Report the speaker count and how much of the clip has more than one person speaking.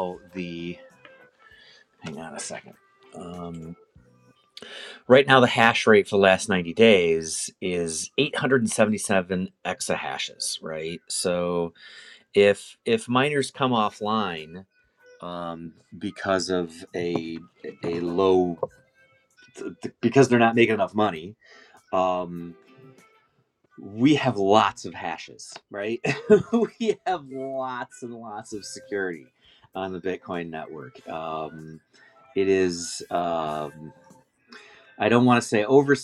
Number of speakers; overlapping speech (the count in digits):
1, no overlap